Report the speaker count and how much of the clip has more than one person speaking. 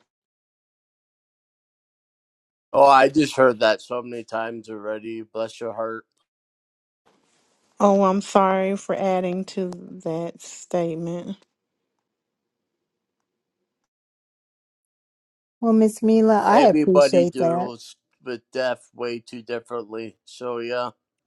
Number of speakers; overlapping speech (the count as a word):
three, about 6%